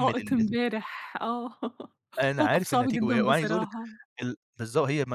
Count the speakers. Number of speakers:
2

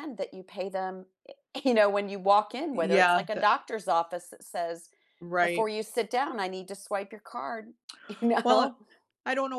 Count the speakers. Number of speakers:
2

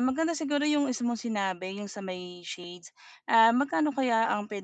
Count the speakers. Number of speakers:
1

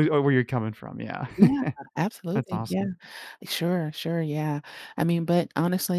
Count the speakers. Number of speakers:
2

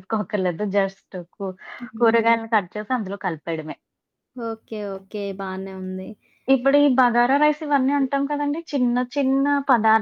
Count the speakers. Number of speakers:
2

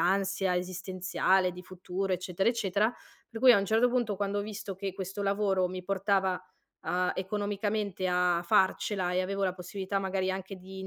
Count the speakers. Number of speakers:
1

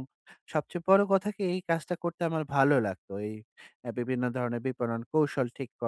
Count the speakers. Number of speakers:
1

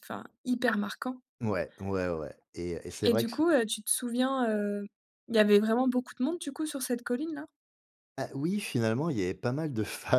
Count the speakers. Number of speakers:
2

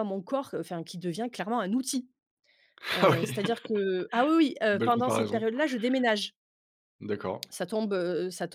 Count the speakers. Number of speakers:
2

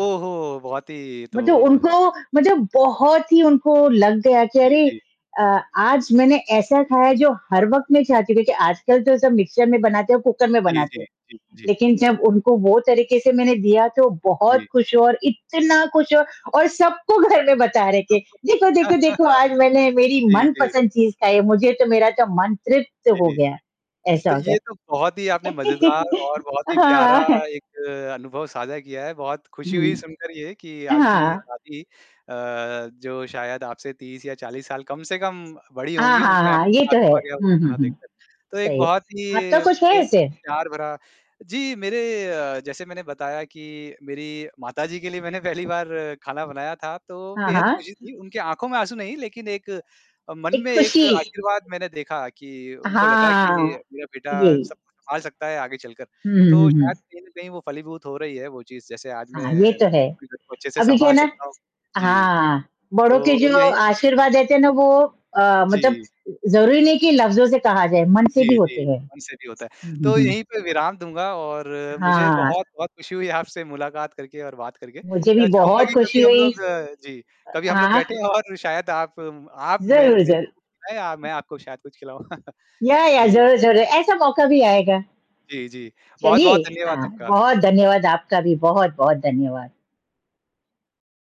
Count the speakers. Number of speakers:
2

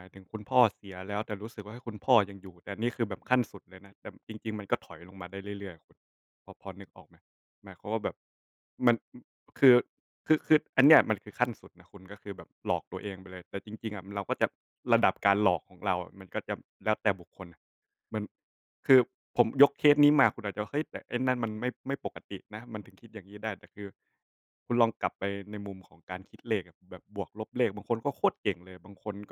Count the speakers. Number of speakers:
1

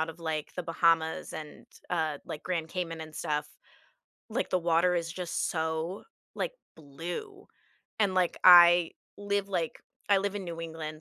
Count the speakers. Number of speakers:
1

